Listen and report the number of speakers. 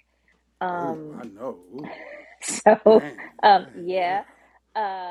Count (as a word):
two